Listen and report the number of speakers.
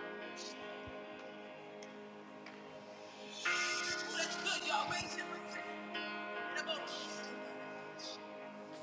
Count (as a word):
zero